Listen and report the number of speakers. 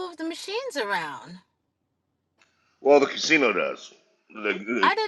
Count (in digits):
2